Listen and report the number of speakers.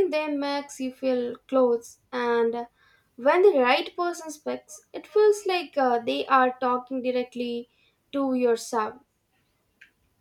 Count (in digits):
1